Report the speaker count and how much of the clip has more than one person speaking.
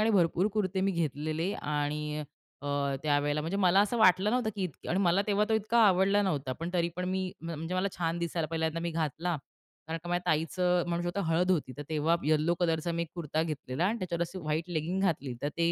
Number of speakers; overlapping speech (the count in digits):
1, no overlap